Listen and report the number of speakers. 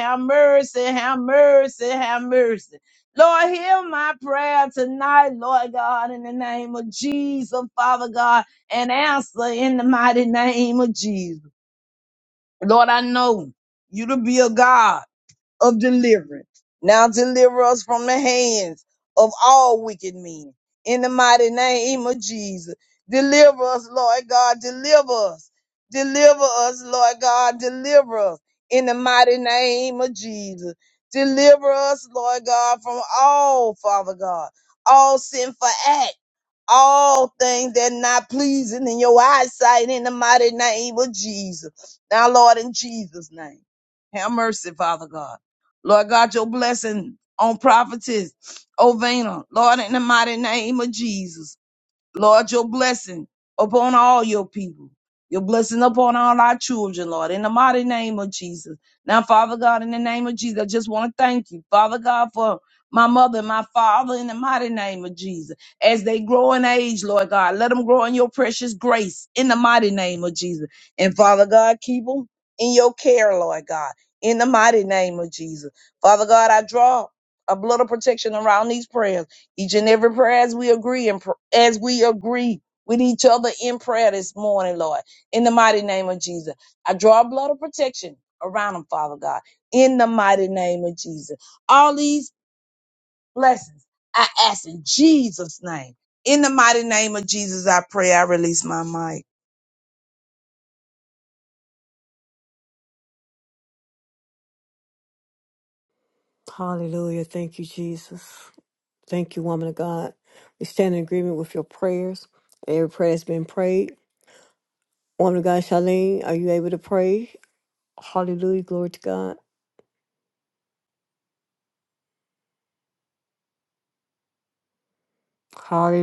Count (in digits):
2